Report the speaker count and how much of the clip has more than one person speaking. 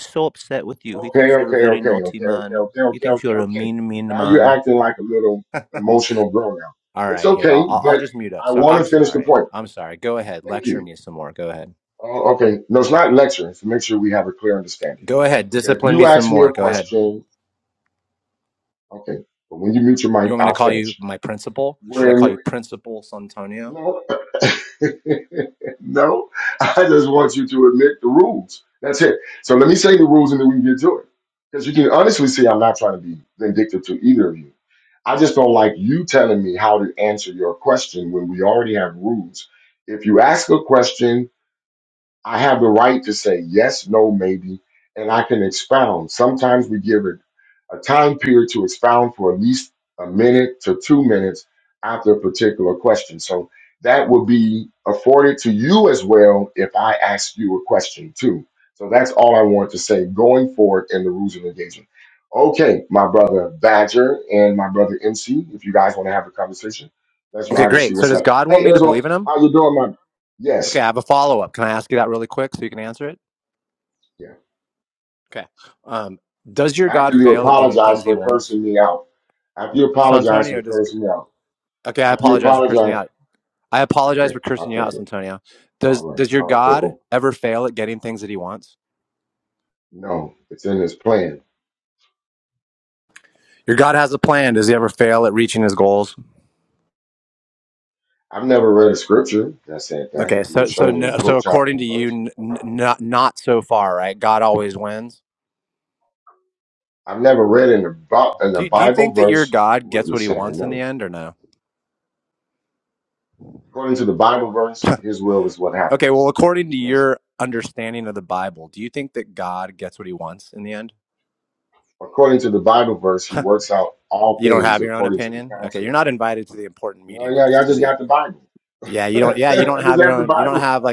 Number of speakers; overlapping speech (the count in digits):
2, about 17%